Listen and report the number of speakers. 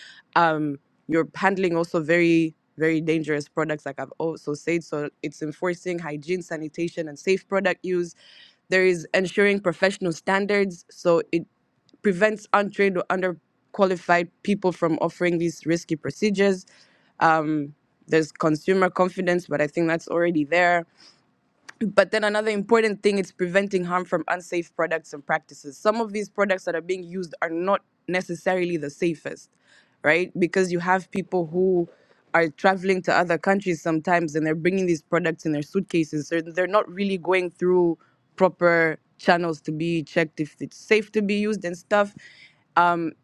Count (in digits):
1